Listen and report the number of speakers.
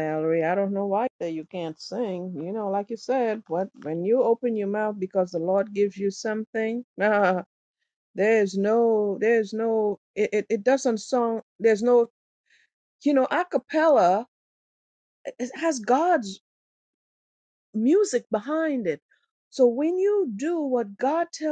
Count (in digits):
1